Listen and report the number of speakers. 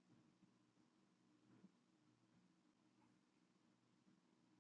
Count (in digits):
0